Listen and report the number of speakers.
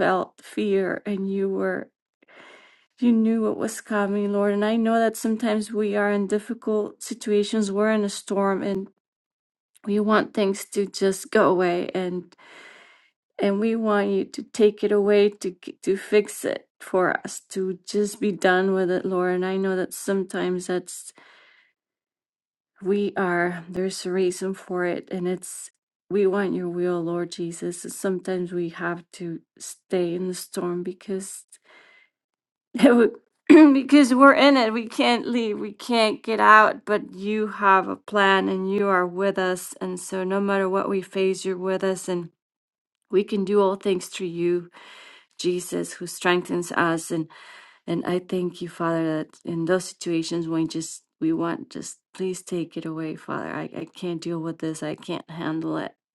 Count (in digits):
1